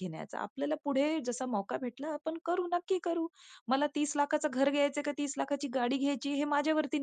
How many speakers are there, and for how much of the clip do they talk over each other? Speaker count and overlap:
1, no overlap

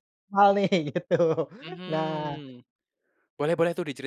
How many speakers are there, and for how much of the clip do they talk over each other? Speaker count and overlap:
2, about 13%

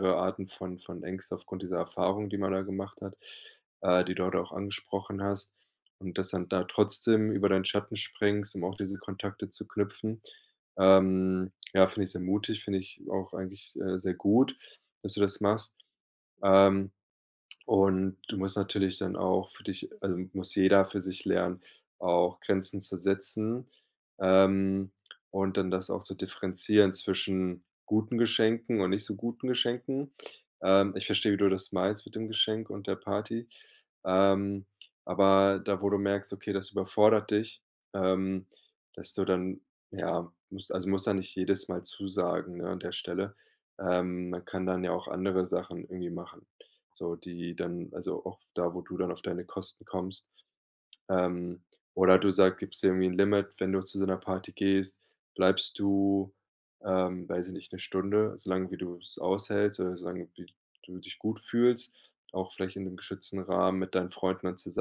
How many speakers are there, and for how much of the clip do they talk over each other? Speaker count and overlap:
1, no overlap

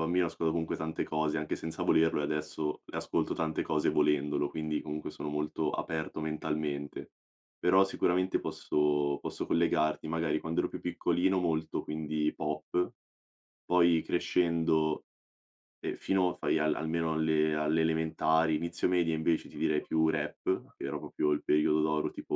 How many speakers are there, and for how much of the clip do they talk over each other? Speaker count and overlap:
1, no overlap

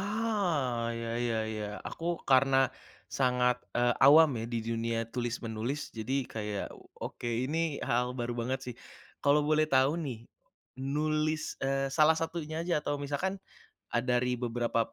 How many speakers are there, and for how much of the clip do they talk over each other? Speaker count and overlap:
1, no overlap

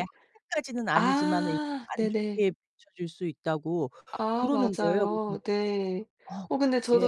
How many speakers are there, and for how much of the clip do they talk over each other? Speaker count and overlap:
2, about 35%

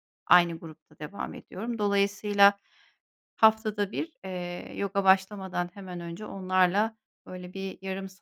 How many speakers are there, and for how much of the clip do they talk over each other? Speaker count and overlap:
1, no overlap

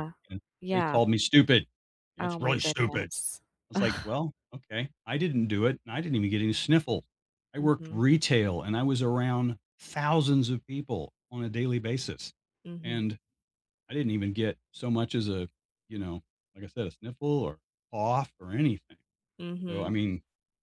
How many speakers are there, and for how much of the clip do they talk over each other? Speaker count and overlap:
2, about 9%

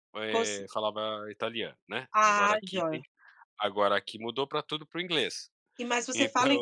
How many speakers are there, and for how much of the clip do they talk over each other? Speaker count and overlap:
2, about 24%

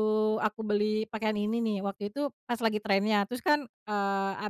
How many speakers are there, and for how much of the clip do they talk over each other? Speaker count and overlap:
1, no overlap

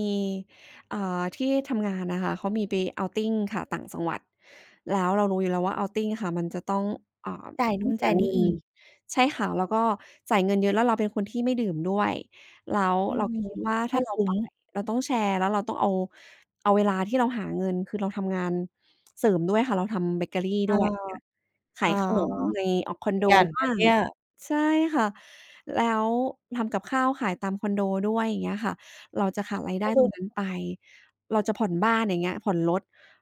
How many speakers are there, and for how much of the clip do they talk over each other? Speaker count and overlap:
2, about 8%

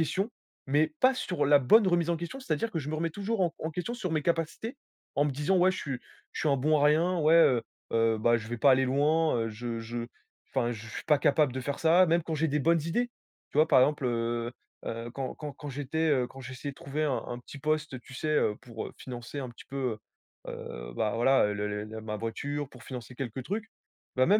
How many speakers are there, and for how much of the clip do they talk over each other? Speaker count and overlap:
1, no overlap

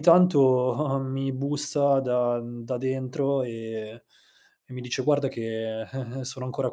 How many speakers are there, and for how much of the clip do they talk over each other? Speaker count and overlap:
1, no overlap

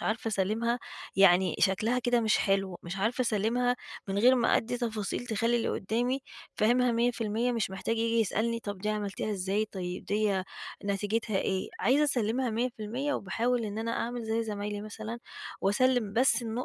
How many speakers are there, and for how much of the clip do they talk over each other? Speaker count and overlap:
1, no overlap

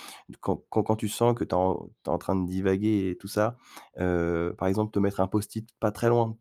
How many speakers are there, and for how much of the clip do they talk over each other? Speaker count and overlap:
1, no overlap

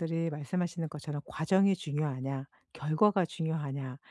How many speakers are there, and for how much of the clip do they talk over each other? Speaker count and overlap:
1, no overlap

